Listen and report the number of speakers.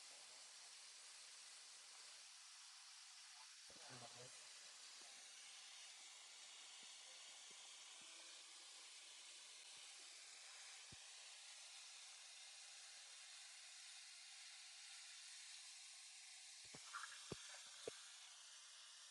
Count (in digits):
0